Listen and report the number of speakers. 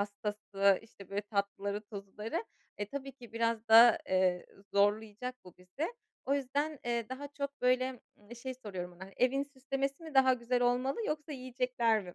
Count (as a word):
one